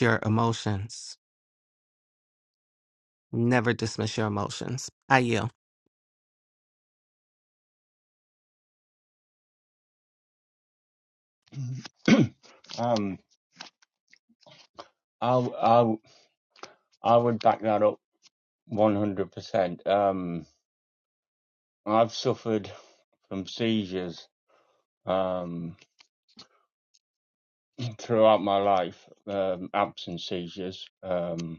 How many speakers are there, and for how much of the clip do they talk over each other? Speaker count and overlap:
2, no overlap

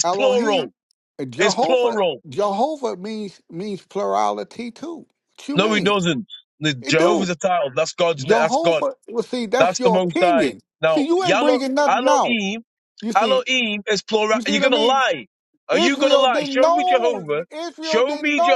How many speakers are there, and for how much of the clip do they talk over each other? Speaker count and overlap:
2, about 47%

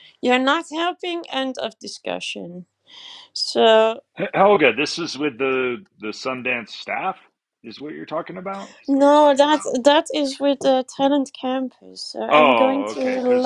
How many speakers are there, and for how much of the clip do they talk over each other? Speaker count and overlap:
2, about 9%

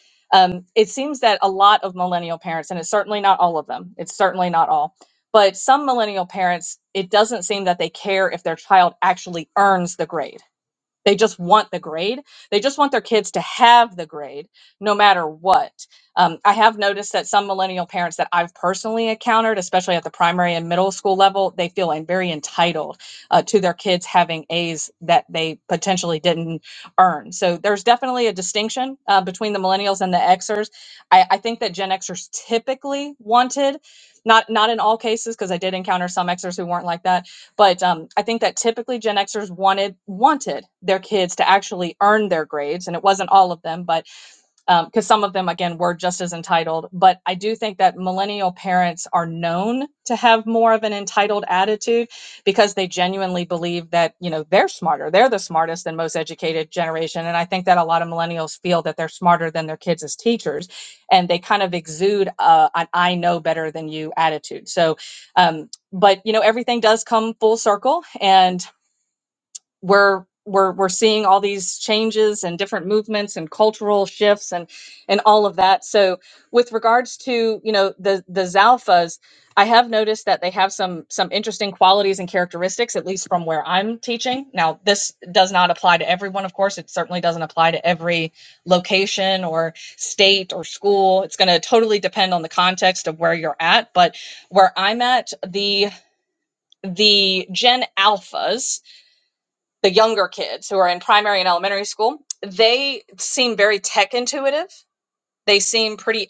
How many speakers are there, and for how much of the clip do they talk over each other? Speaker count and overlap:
1, no overlap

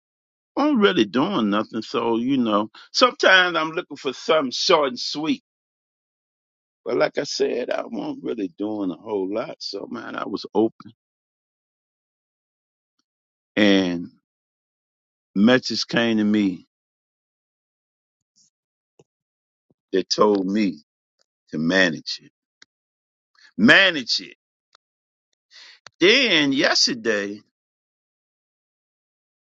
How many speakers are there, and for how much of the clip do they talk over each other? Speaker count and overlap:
1, no overlap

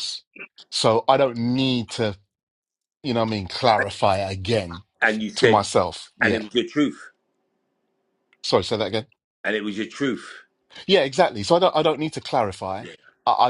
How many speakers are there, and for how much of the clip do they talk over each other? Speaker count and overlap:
2, about 4%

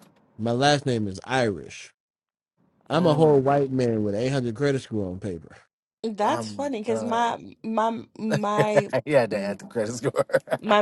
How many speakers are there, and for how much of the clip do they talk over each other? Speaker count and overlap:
3, about 9%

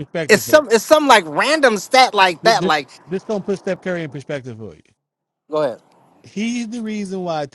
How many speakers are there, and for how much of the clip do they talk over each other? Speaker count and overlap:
2, about 8%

